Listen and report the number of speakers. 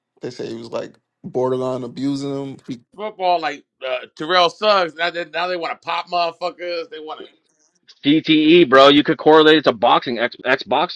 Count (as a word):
three